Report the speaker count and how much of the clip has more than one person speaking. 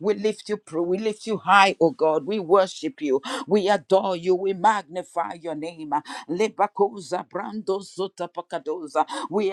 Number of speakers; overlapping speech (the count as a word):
one, no overlap